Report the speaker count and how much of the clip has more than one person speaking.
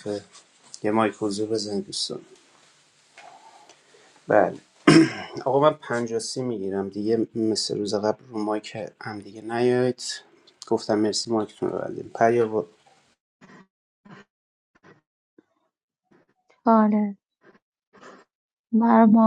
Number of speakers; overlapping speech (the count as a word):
two, no overlap